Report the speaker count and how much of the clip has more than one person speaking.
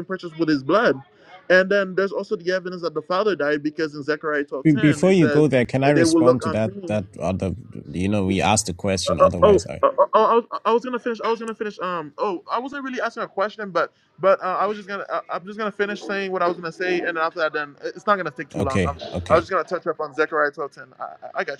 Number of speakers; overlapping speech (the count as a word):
two, about 16%